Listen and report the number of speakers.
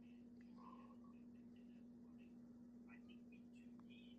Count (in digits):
0